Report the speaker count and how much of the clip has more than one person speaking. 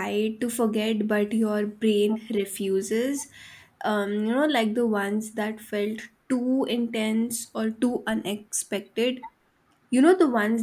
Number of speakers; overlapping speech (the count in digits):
1, no overlap